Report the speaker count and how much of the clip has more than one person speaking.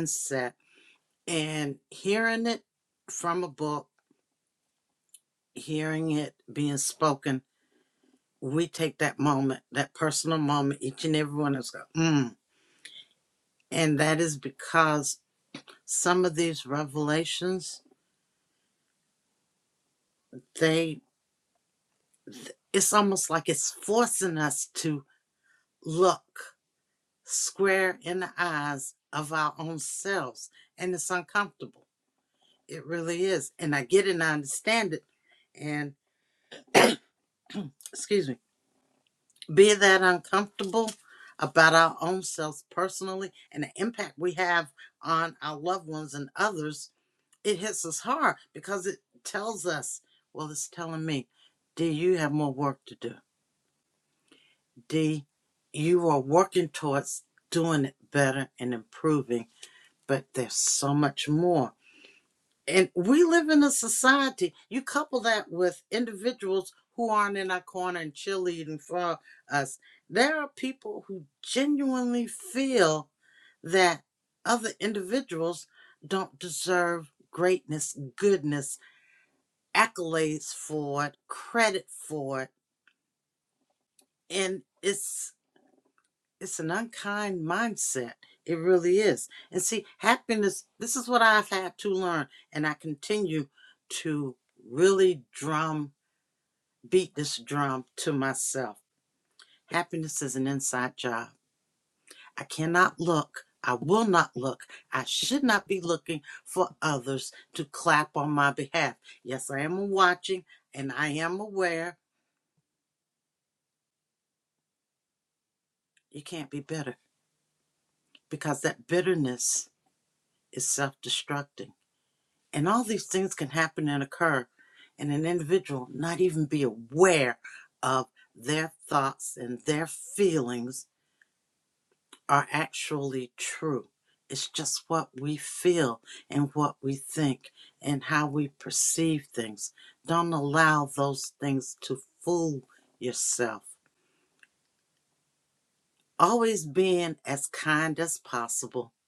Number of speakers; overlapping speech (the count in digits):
1, no overlap